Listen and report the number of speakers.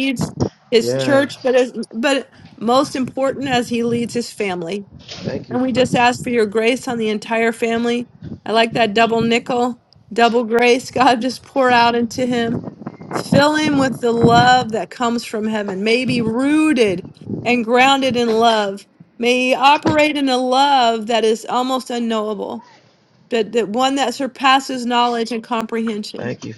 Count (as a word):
two